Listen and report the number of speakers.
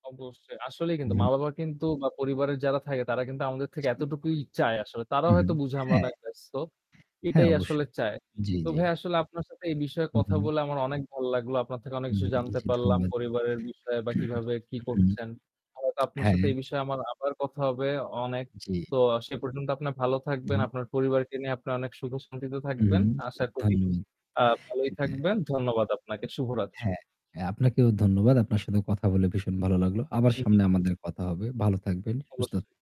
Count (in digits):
2